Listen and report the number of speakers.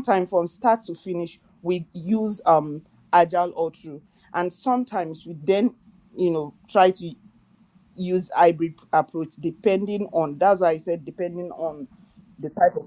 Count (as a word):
one